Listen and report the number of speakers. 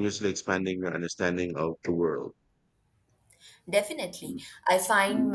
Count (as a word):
two